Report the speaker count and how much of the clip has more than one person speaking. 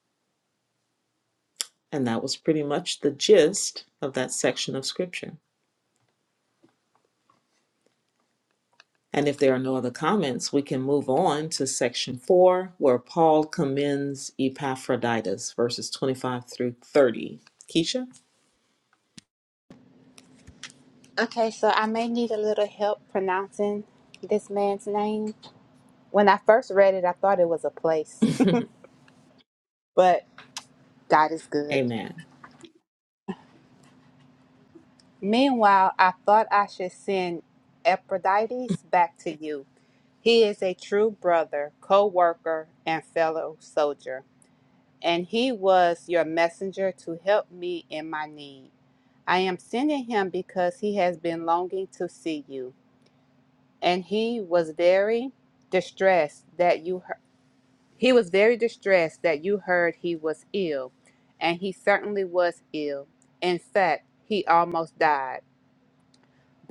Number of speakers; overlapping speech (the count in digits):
2, under 1%